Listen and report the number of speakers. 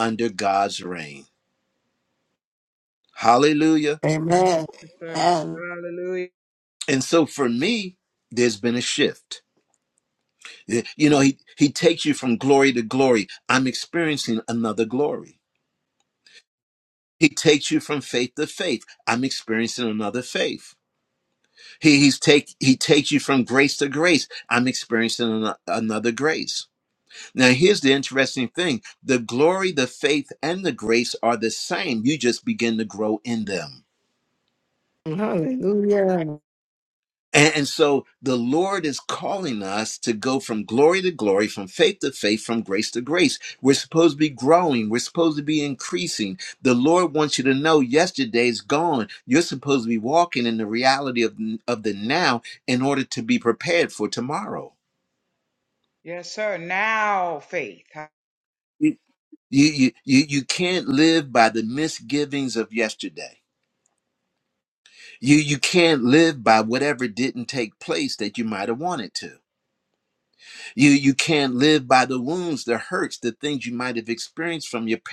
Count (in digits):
4